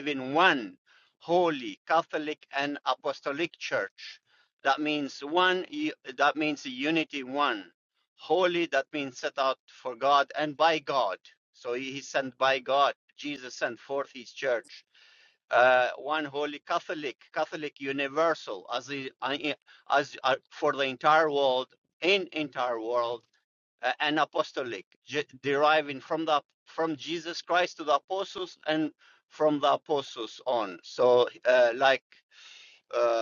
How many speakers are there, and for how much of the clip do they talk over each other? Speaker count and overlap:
1, no overlap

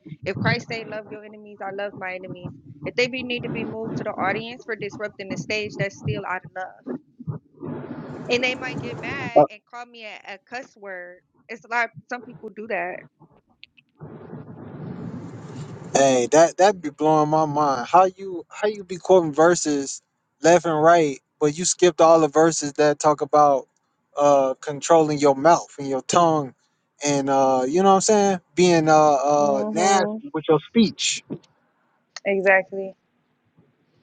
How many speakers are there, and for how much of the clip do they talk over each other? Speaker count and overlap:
2, about 2%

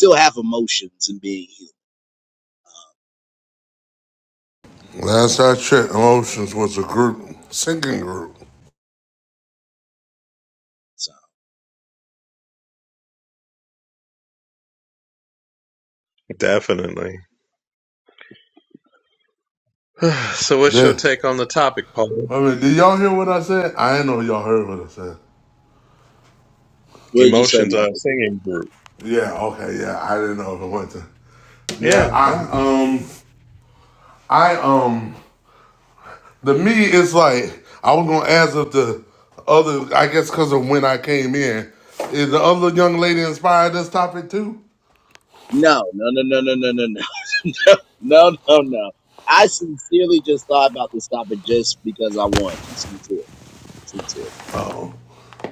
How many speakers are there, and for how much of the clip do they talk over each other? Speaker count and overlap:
3, about 3%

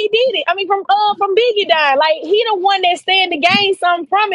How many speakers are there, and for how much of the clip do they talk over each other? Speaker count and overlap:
1, no overlap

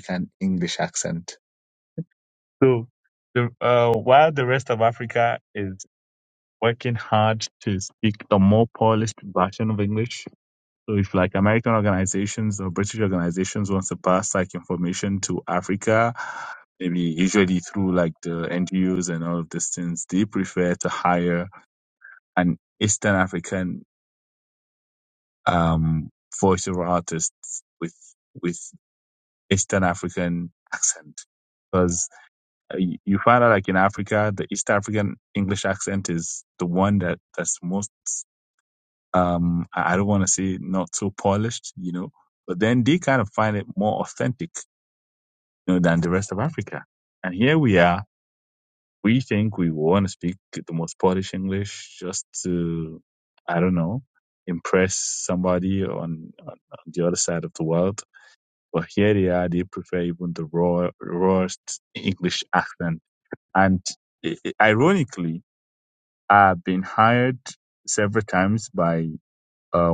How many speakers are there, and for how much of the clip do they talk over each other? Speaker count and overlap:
1, no overlap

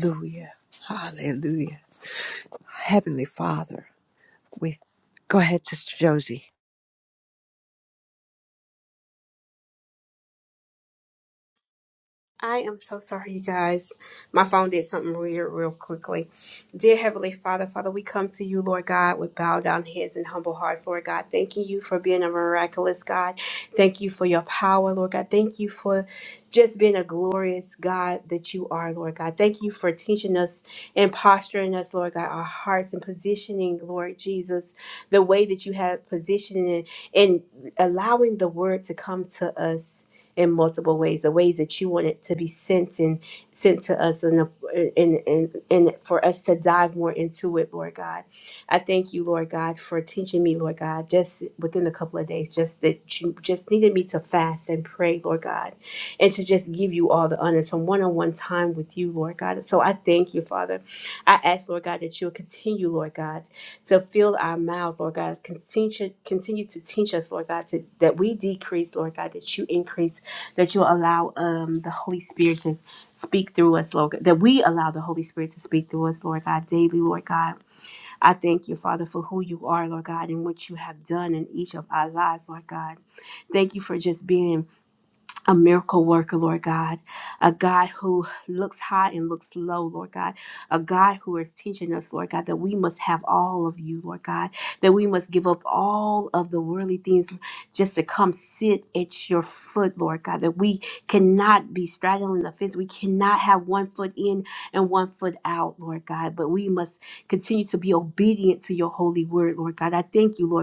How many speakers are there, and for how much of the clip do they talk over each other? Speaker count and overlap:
2, no overlap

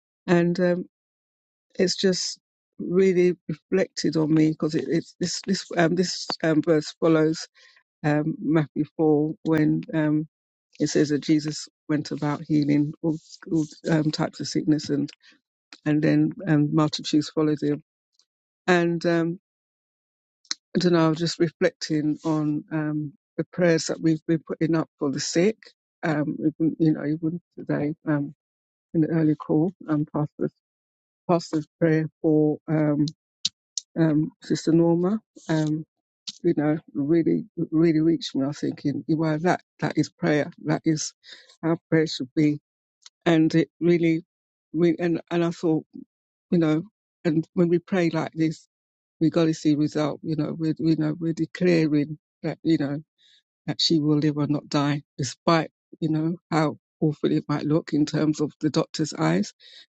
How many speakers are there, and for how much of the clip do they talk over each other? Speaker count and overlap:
1, no overlap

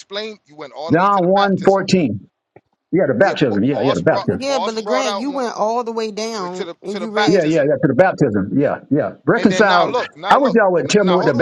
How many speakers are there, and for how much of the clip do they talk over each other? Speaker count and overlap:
3, about 57%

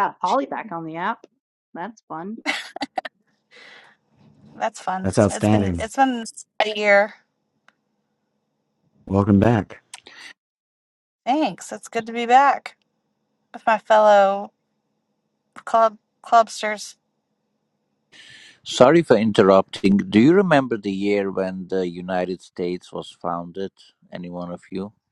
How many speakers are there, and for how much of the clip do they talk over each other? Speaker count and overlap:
4, about 3%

